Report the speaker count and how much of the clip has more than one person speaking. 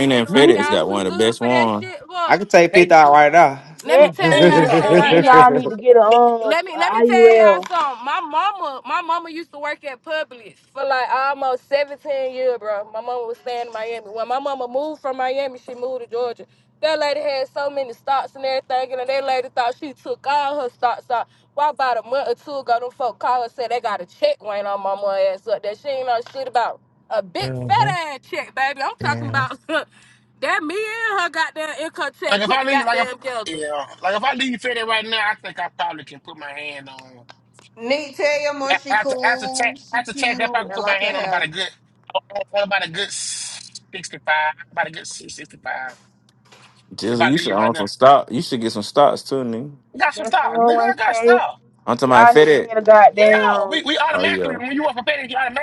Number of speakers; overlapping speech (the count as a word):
six, about 23%